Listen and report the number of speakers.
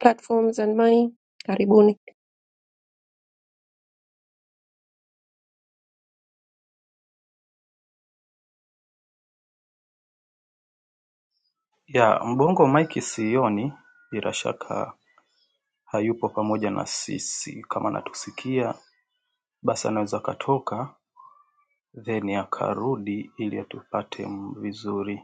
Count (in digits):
2